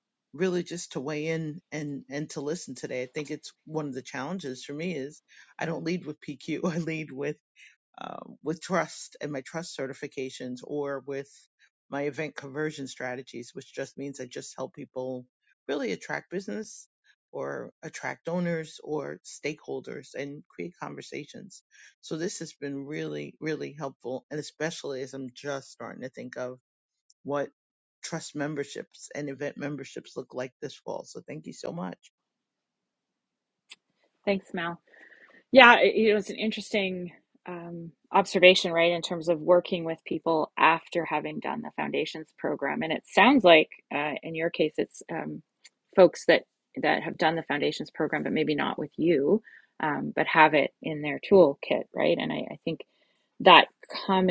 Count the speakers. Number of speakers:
two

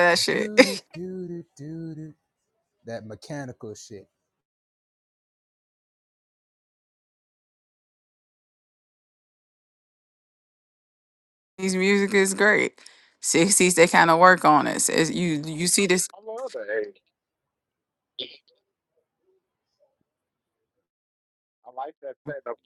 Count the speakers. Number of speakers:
three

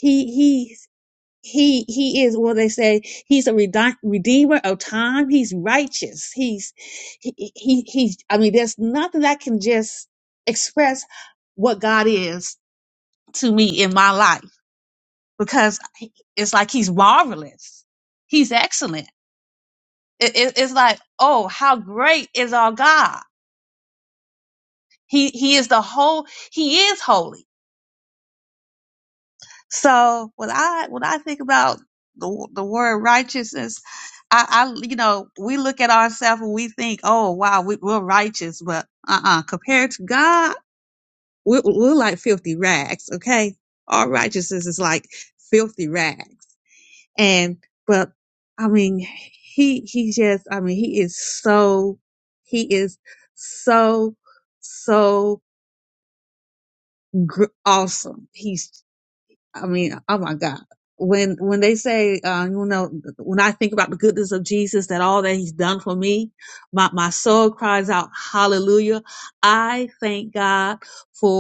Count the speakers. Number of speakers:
one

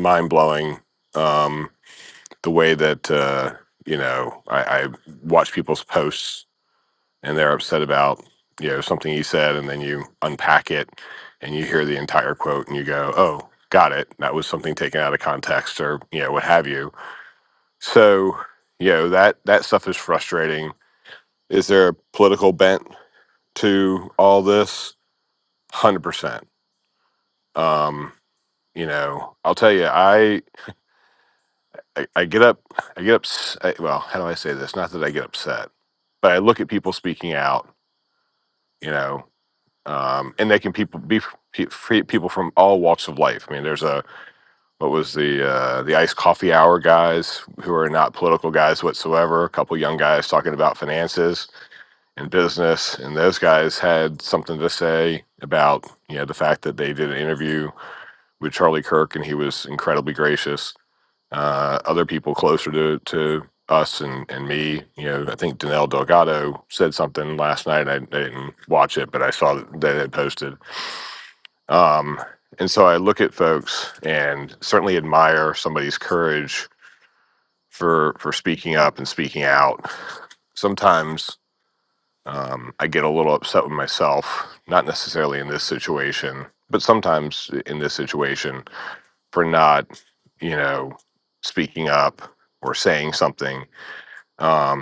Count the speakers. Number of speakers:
one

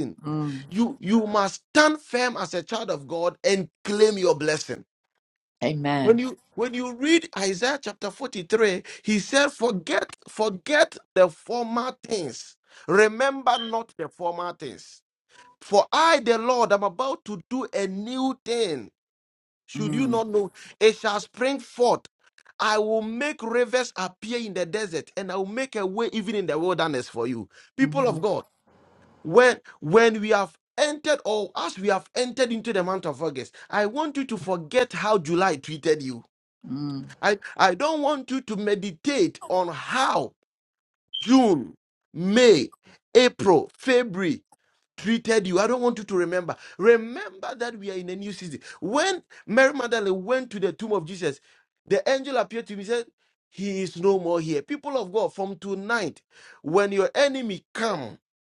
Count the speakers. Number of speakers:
two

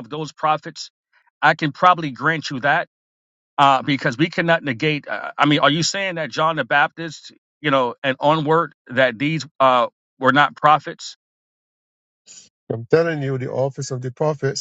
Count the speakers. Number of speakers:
two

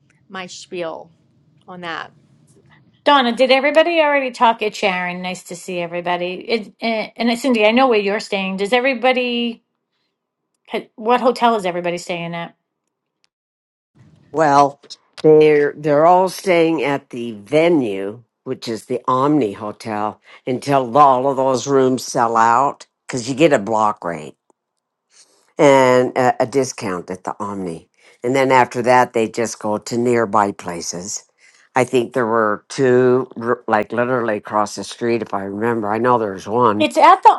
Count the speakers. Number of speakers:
three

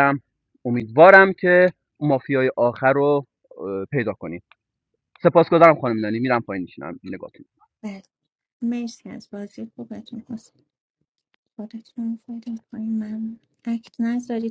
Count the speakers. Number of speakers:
two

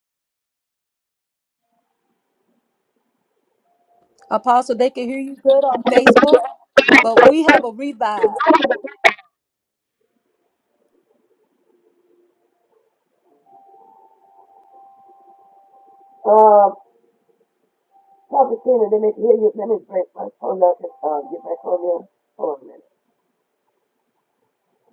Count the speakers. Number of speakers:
two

